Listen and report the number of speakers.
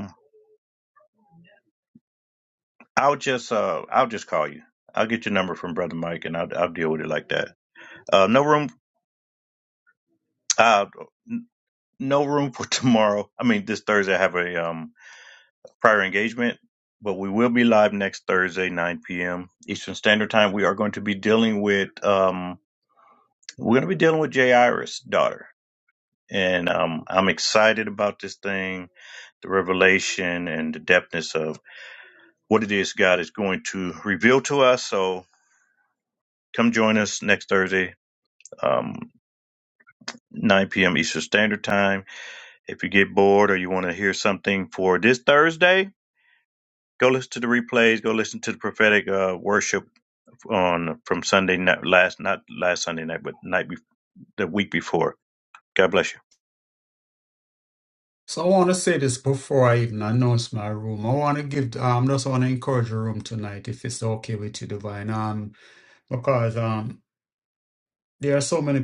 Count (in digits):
2